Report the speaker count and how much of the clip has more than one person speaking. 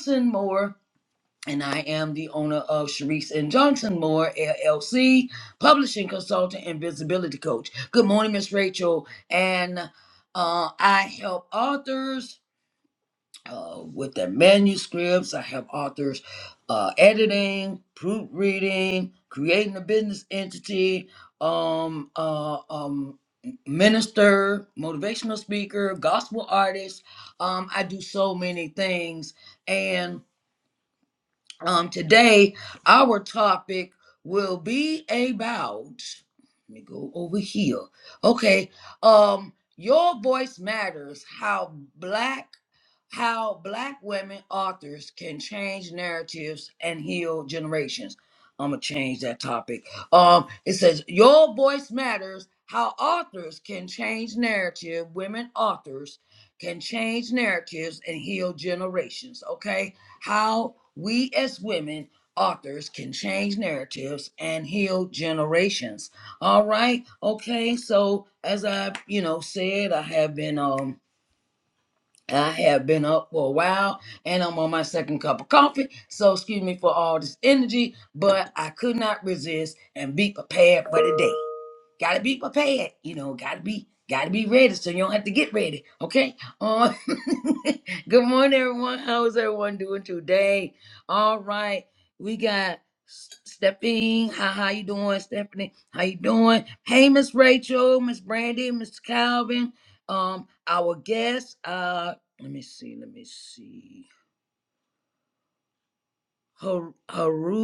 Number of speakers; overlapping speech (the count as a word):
one, no overlap